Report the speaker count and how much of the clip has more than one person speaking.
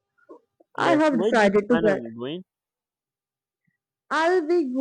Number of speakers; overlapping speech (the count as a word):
two, about 26%